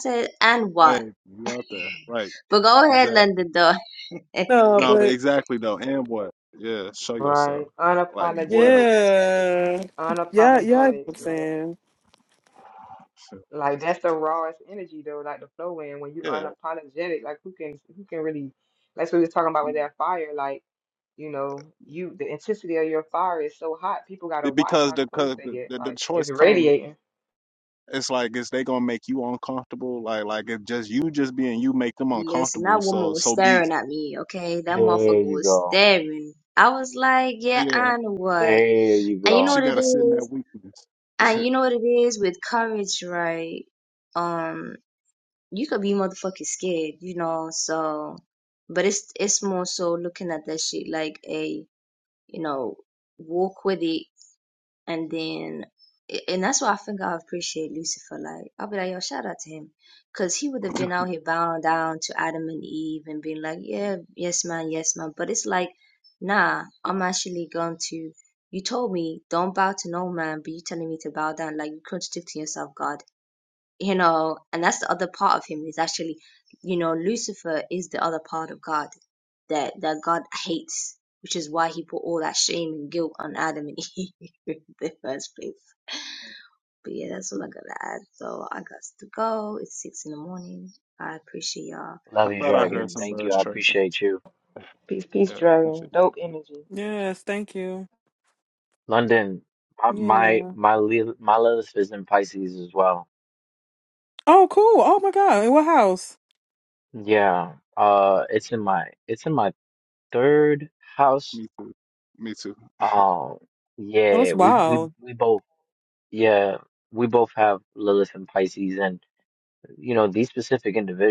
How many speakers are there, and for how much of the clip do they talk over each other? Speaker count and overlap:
5, about 12%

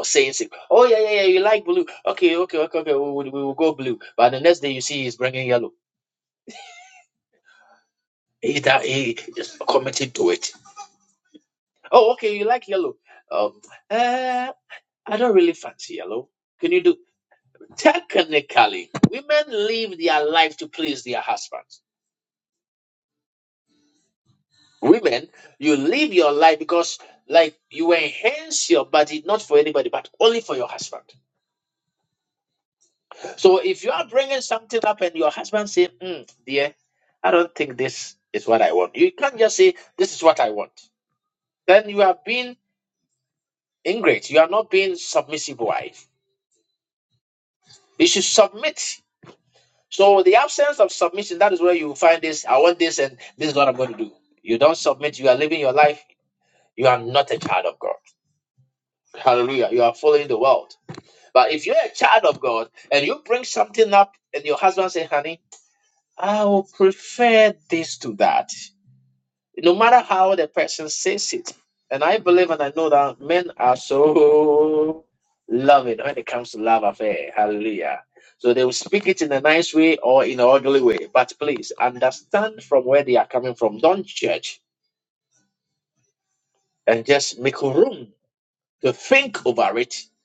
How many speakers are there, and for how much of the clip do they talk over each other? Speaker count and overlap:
1, no overlap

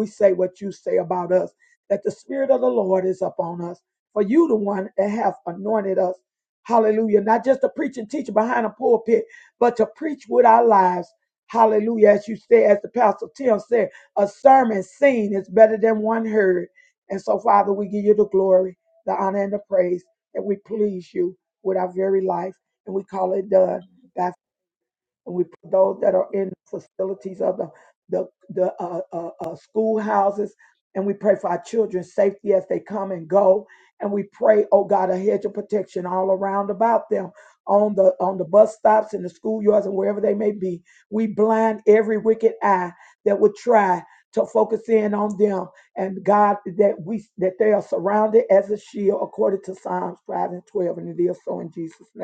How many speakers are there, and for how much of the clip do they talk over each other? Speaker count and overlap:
1, no overlap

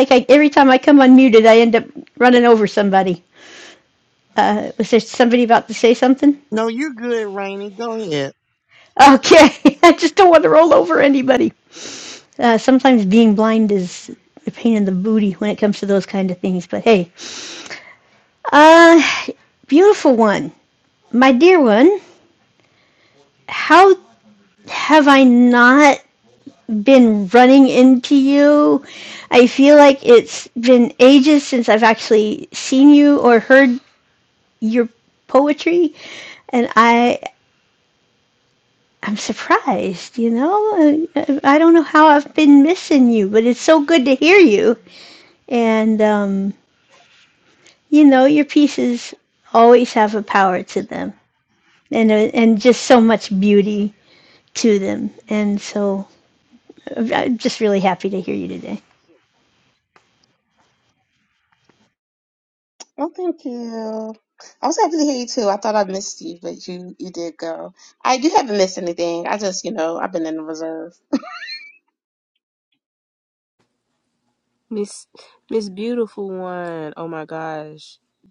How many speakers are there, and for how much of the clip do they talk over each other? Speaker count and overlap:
4, no overlap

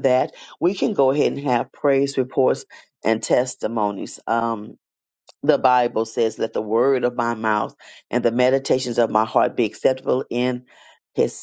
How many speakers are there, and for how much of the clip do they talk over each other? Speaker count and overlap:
1, no overlap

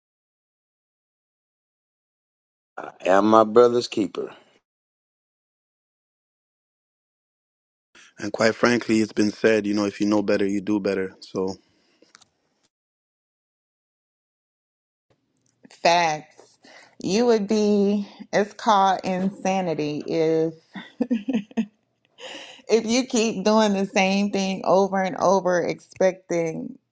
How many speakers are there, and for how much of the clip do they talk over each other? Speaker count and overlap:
3, no overlap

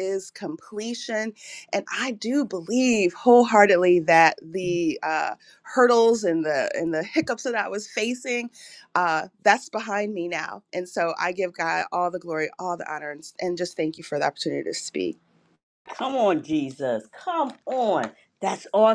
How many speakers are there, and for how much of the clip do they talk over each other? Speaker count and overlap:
2, no overlap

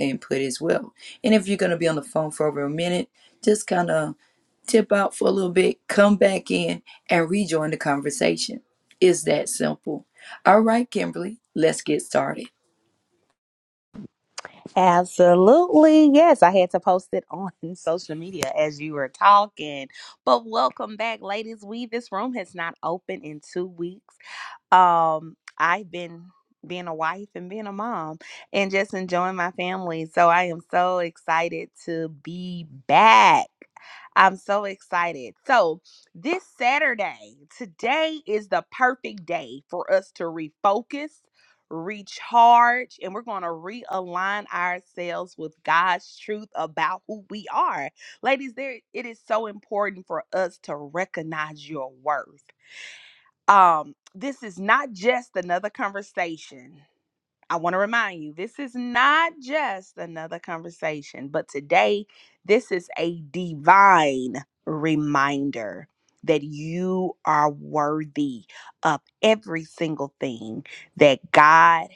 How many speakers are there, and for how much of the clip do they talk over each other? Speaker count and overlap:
2, no overlap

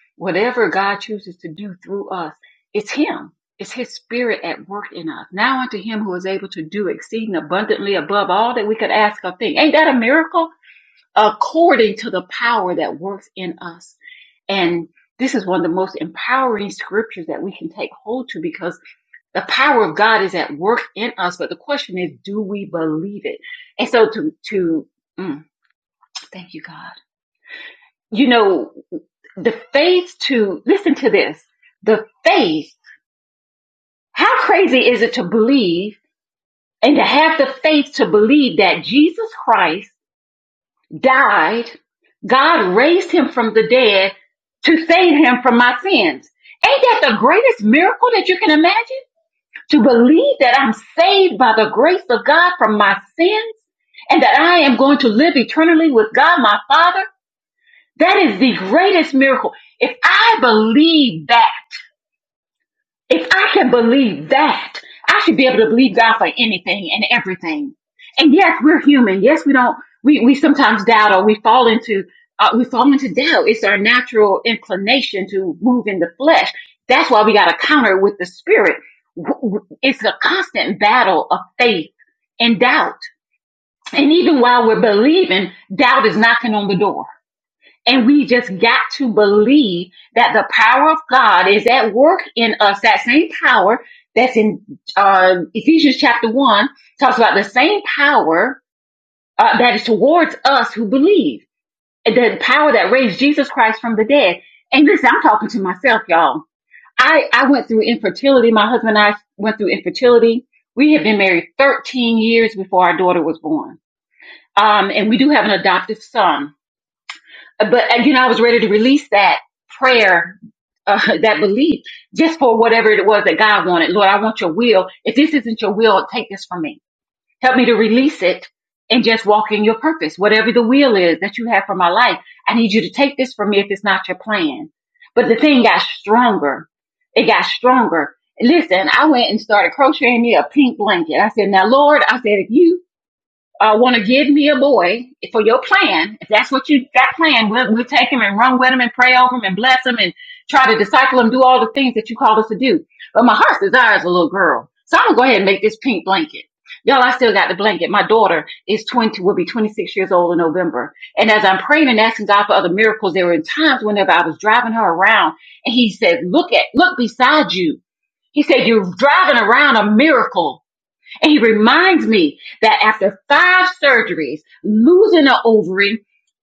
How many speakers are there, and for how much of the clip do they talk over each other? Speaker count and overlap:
1, no overlap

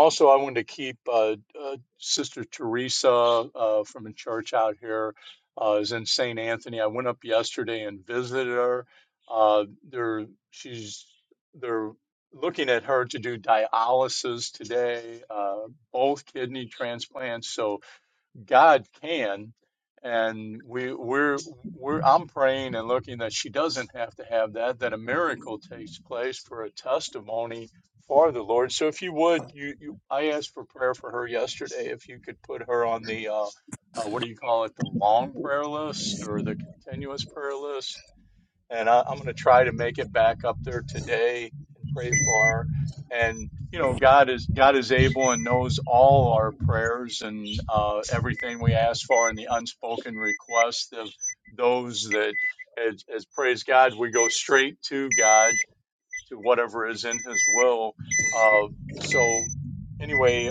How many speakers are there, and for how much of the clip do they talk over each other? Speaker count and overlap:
1, no overlap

